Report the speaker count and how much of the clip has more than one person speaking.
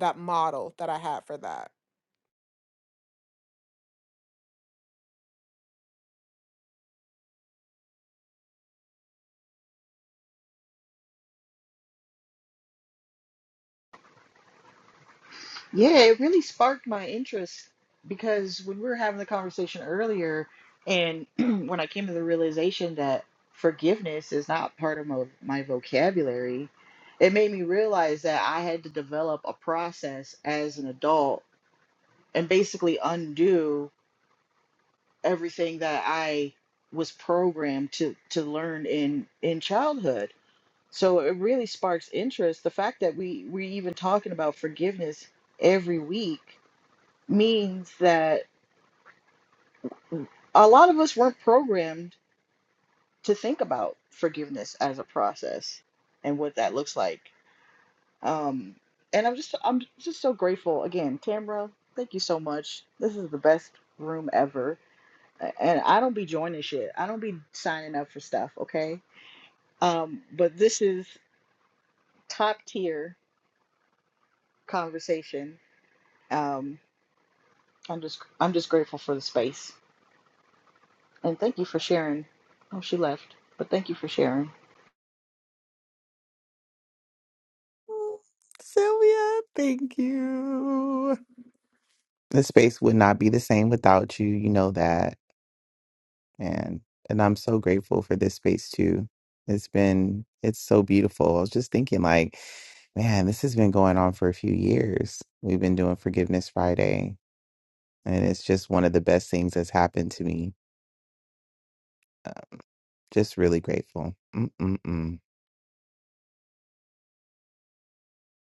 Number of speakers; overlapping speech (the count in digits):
3, no overlap